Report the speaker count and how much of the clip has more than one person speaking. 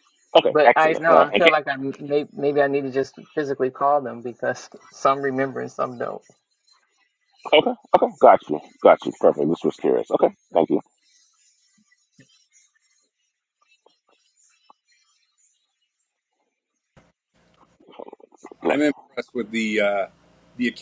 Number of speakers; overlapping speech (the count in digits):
3, about 5%